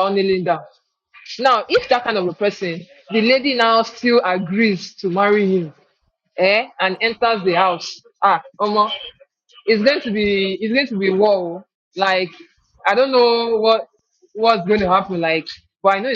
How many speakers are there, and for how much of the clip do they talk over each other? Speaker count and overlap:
1, no overlap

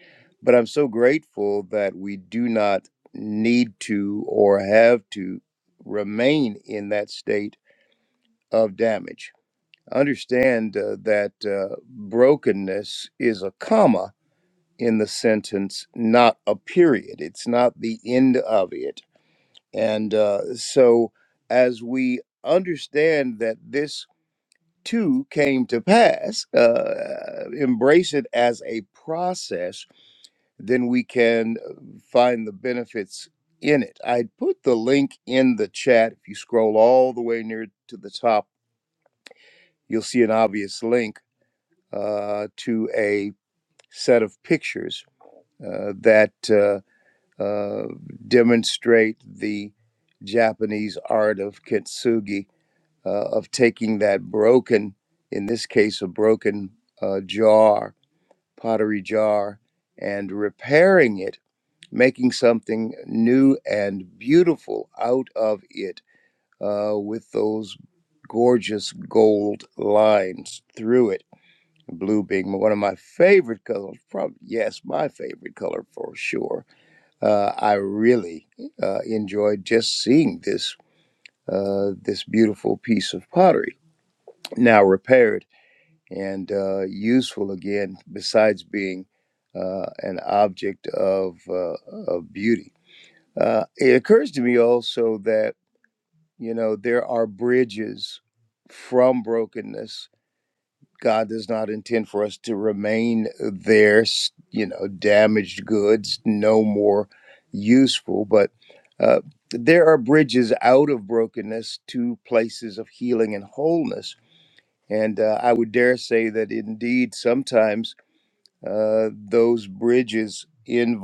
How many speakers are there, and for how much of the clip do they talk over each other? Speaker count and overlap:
1, no overlap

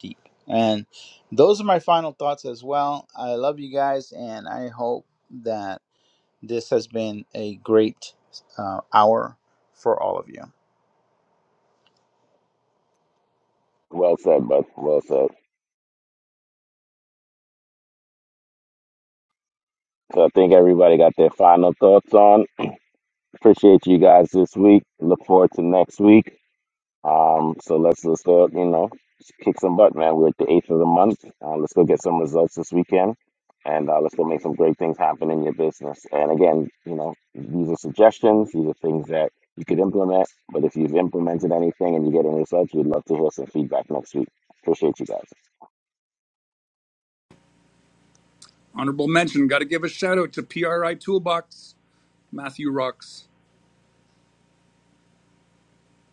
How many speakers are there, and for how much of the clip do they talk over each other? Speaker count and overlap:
3, no overlap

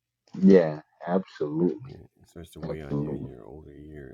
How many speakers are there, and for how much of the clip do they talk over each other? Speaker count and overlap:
2, about 15%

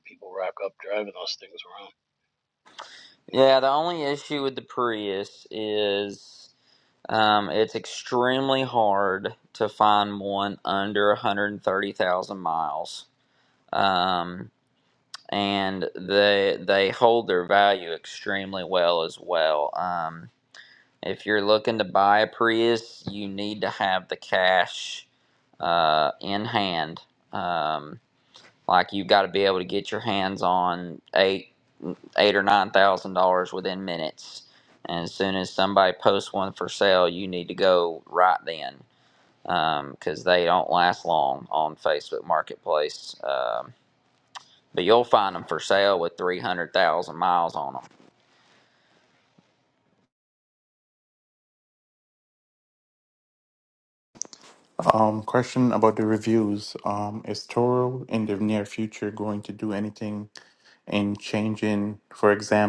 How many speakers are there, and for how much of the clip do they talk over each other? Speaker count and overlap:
3, under 1%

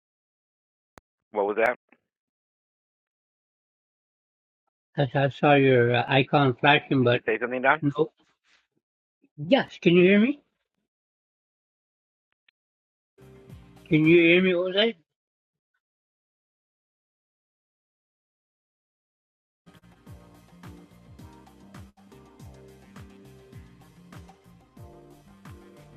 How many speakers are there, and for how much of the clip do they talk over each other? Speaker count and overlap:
2, about 1%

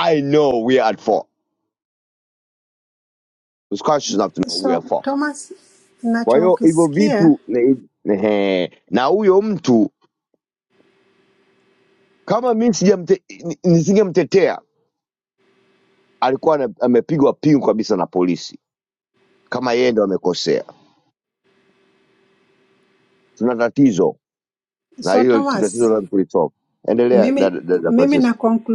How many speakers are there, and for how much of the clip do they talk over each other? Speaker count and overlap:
2, about 12%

